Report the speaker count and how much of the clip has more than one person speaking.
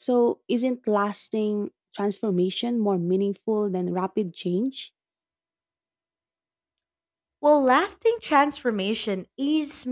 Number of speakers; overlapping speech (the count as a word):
two, no overlap